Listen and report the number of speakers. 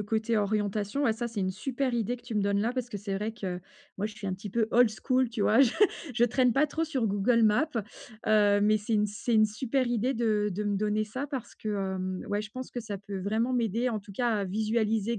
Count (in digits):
1